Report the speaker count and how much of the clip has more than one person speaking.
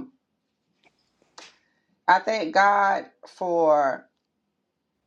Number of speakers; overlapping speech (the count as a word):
one, no overlap